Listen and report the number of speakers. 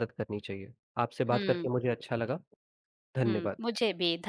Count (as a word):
two